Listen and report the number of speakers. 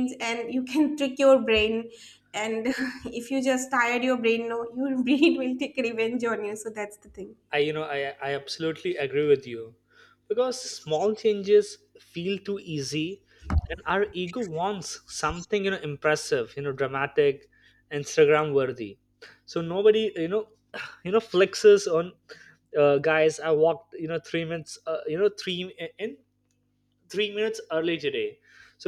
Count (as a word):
two